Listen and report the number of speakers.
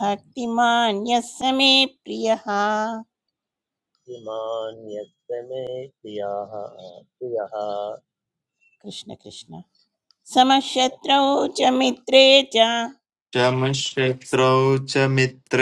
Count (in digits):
3